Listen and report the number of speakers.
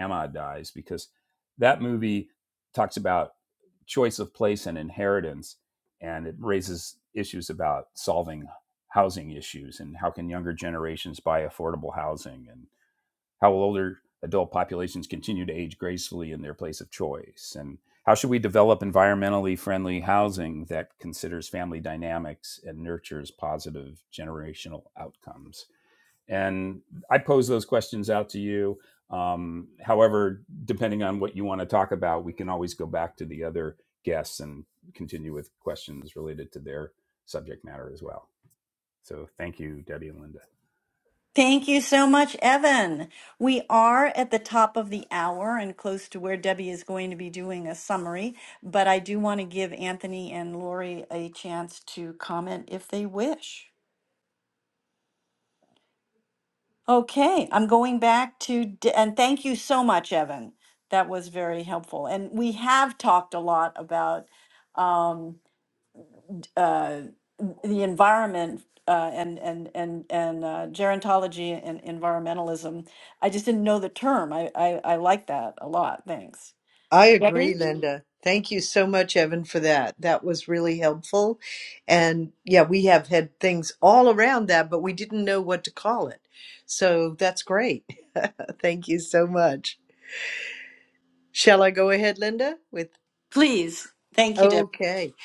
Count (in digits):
3